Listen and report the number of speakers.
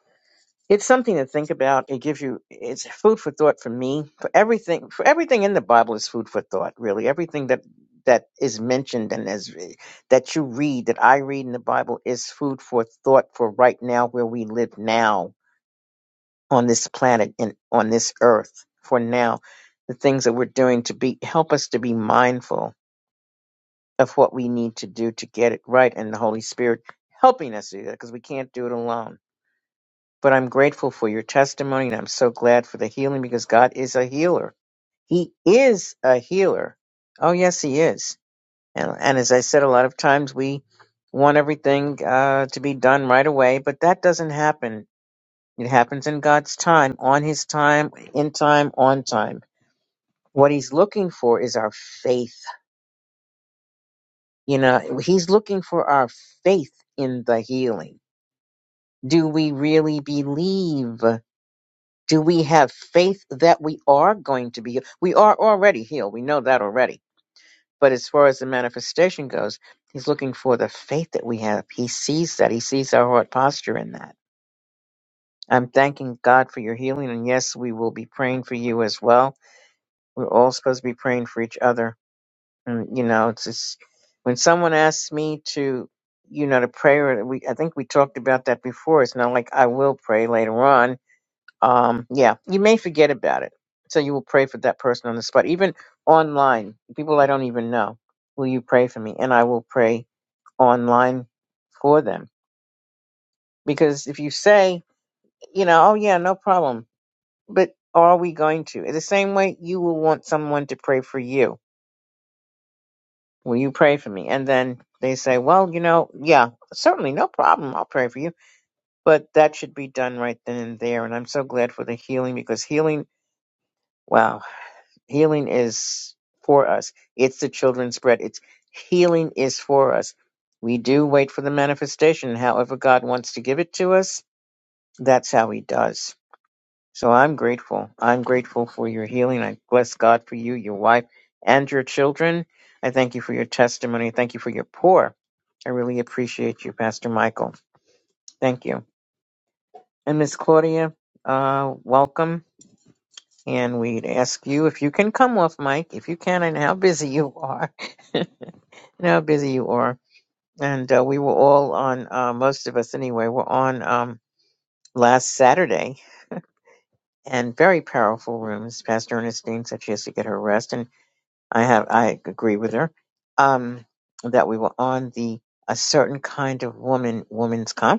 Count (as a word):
one